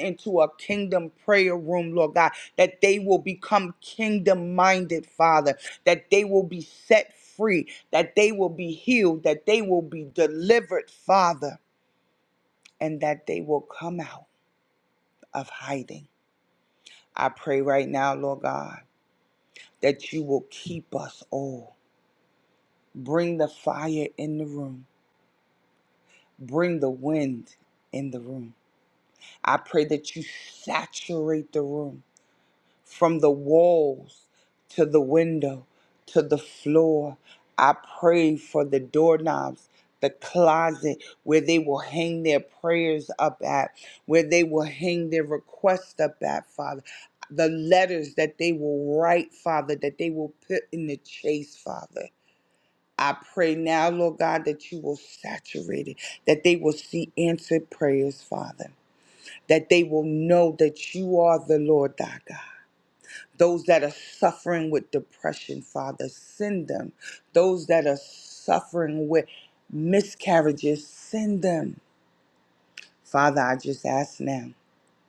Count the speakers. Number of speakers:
one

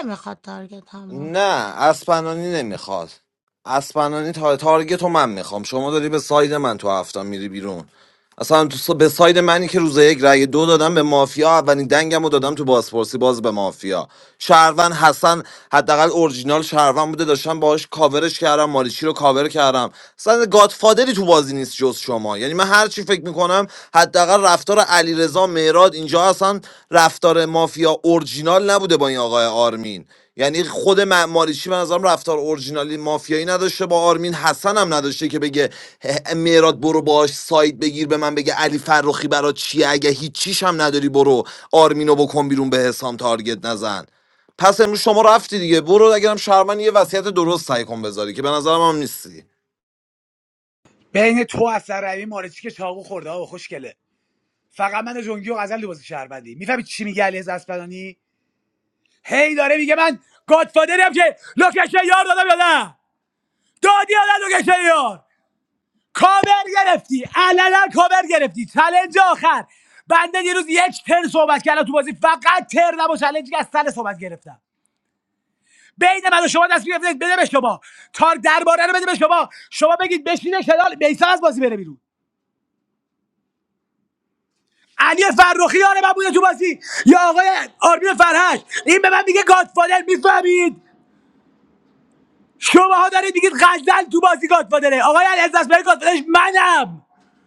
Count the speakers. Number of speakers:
three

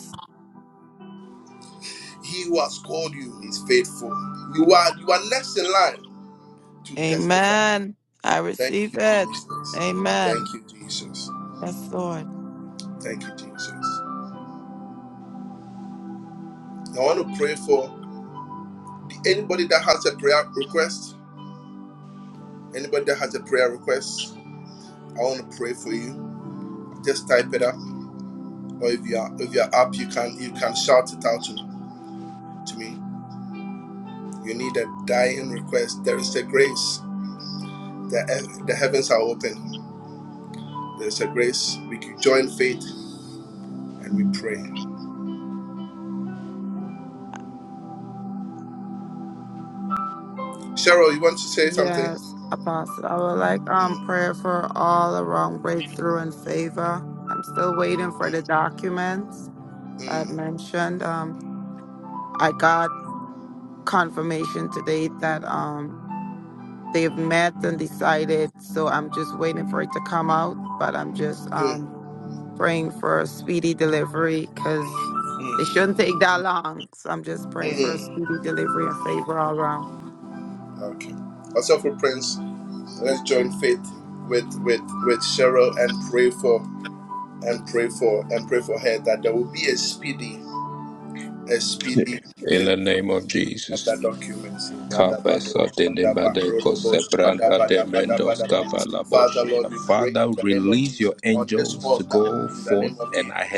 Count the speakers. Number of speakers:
three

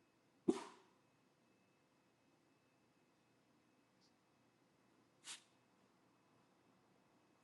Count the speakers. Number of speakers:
zero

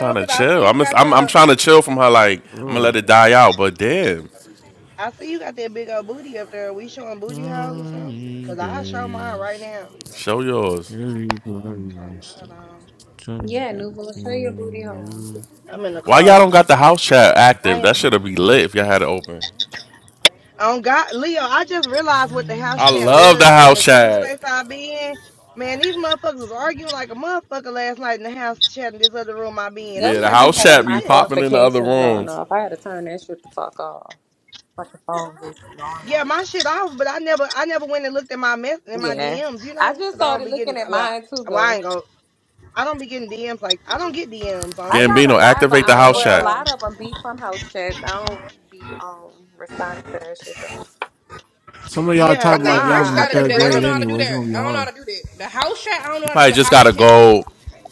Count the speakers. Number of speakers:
five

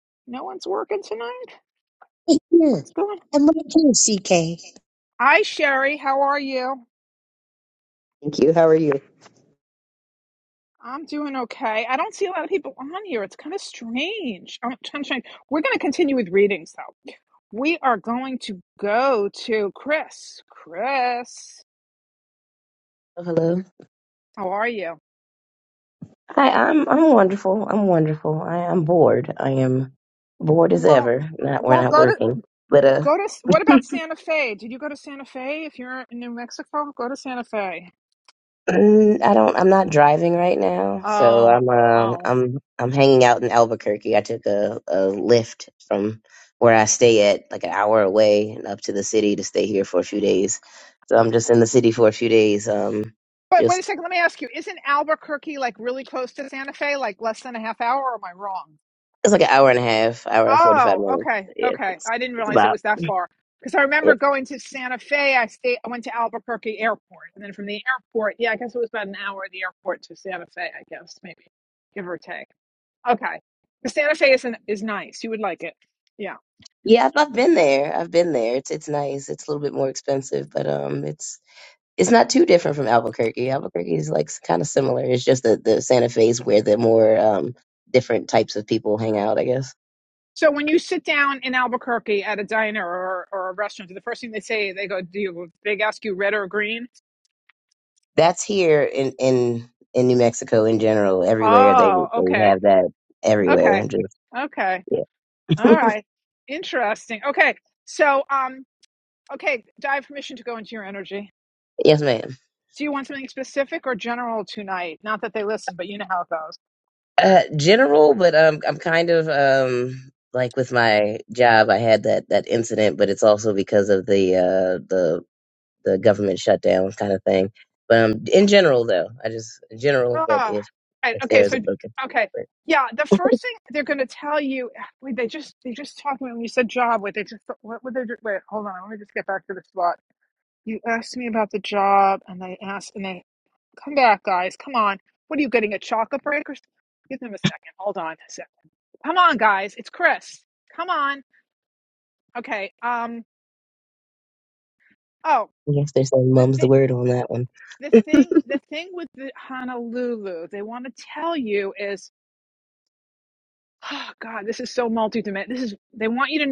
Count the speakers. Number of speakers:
three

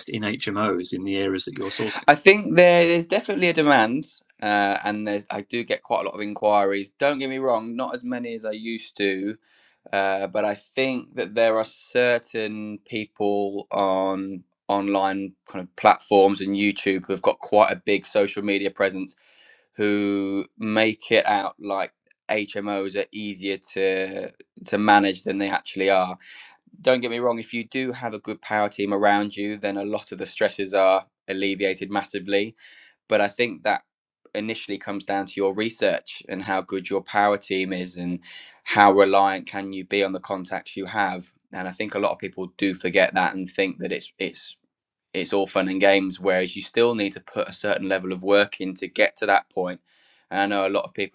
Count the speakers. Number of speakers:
two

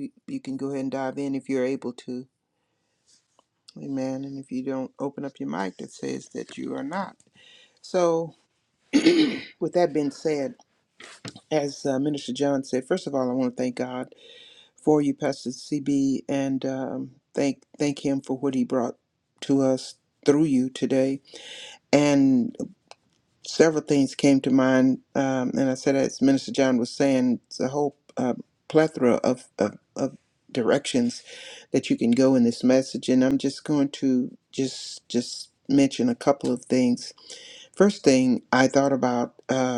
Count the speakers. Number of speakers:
one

